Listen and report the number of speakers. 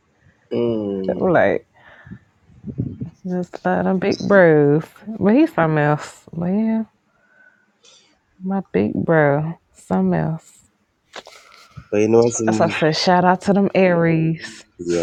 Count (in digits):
2